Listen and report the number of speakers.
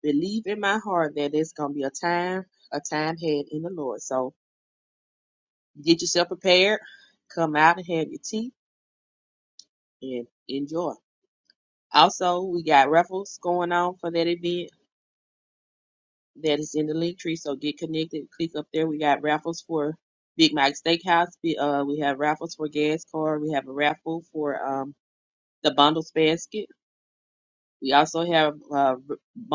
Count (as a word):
one